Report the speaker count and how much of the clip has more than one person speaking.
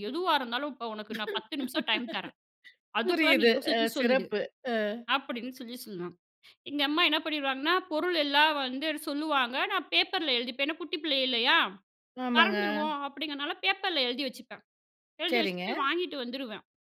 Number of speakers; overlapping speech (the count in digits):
2, about 13%